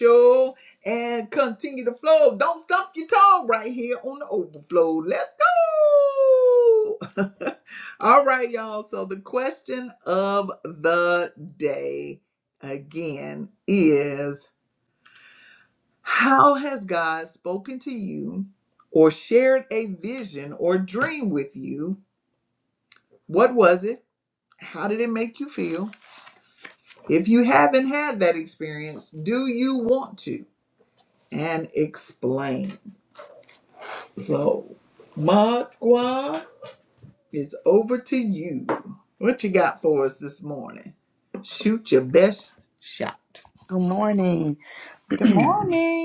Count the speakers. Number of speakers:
two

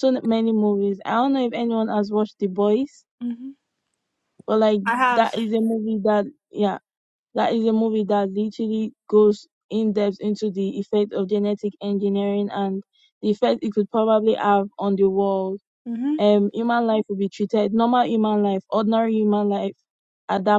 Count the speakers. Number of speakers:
two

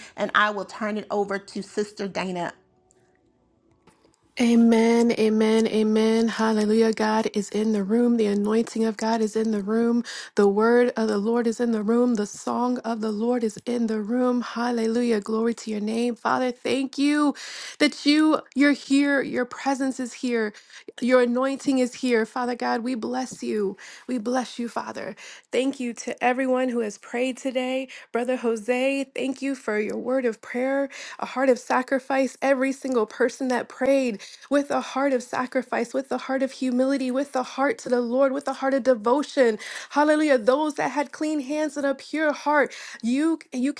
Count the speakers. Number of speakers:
two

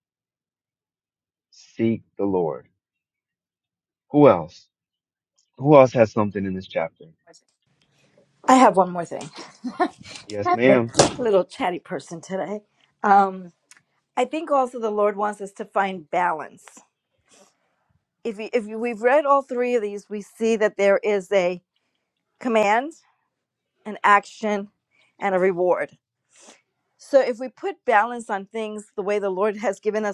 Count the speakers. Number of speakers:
two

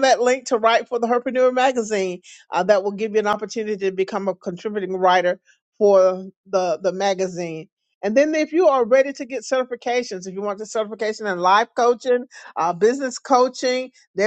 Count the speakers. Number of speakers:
one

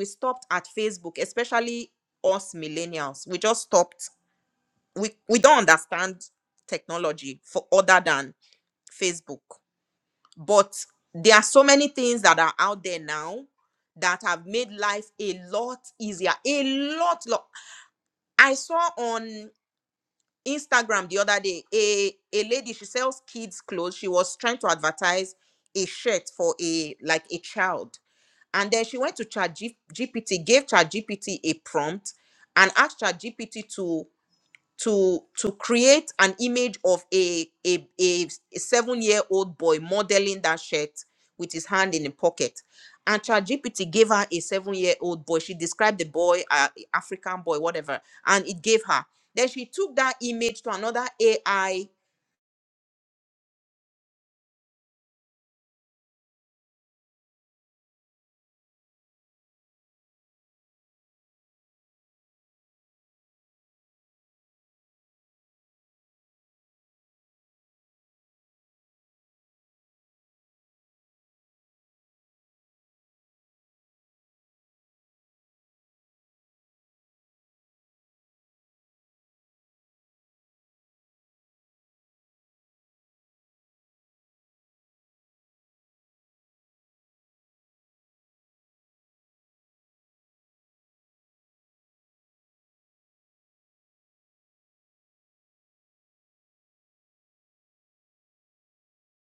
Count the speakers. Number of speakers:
one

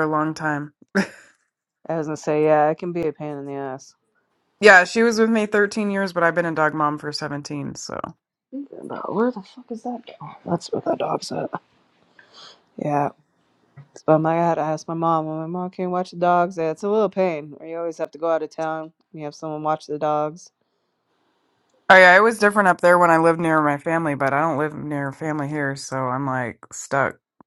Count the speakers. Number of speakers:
two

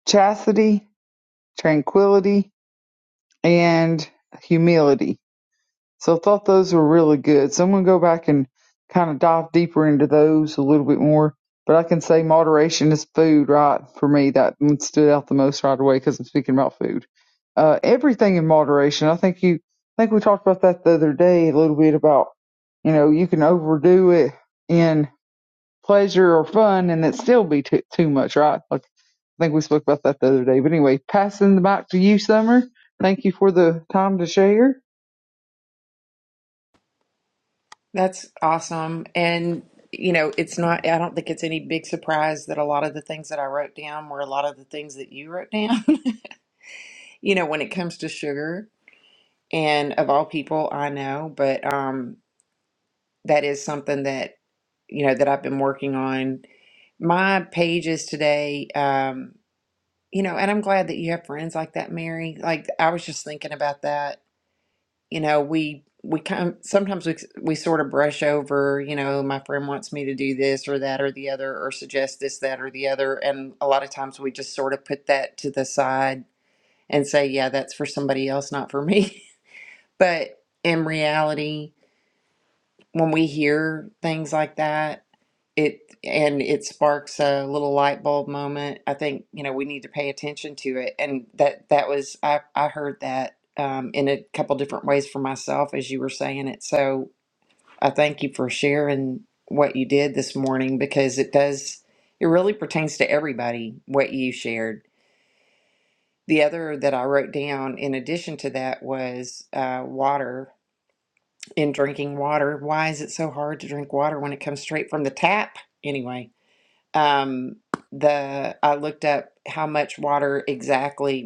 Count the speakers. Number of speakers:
two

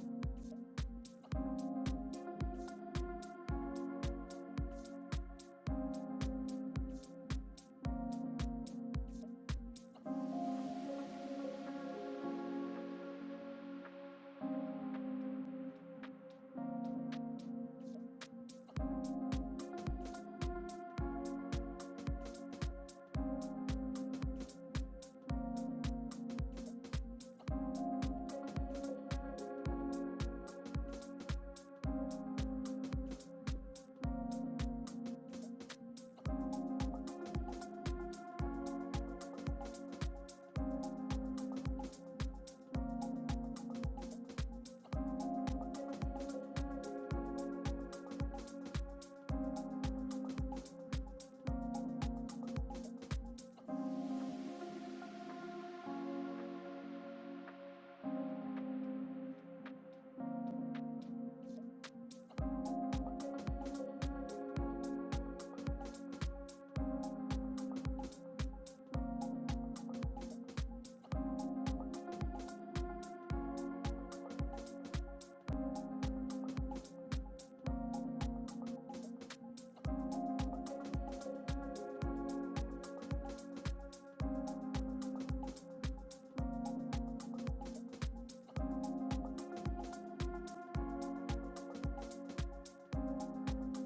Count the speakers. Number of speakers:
zero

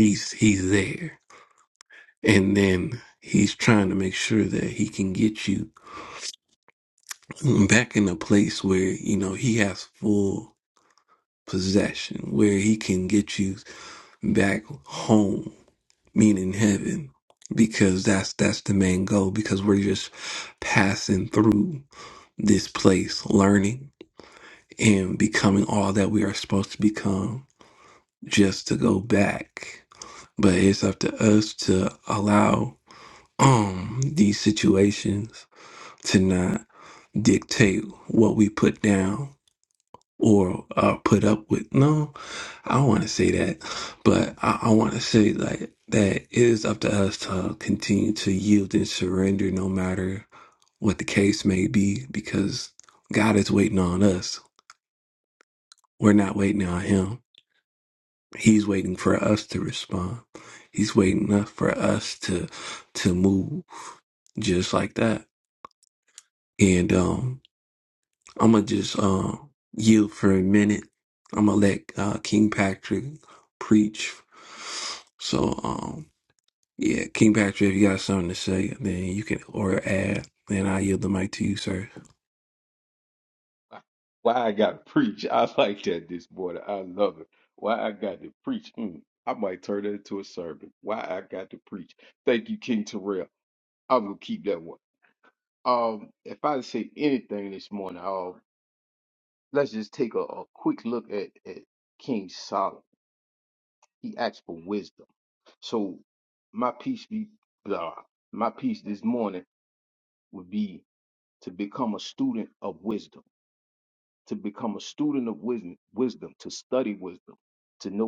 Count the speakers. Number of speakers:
two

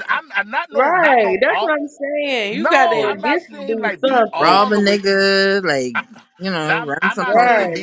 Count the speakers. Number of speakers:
three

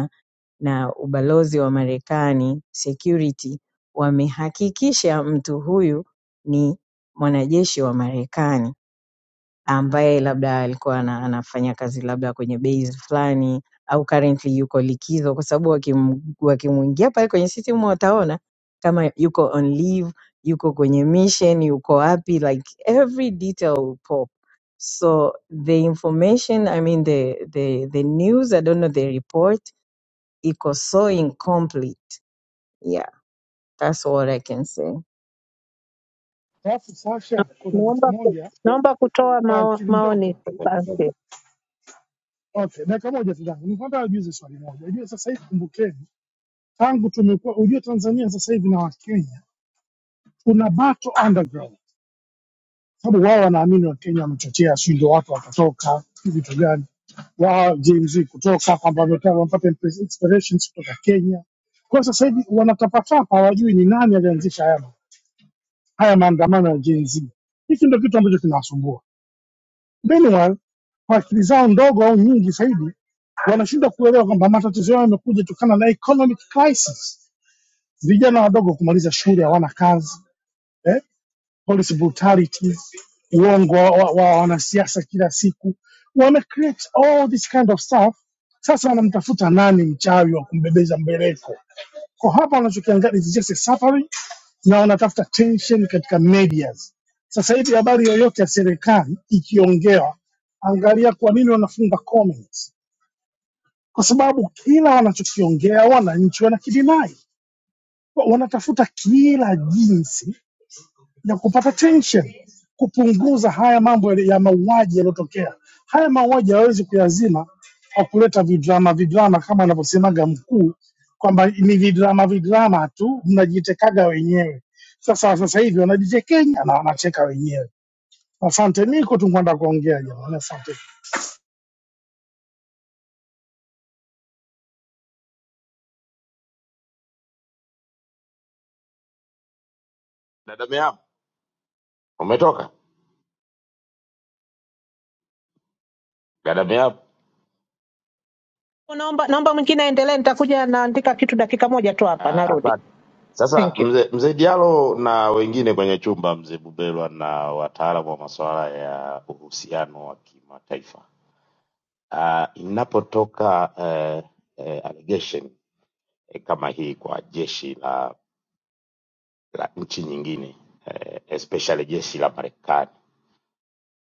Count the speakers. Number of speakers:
four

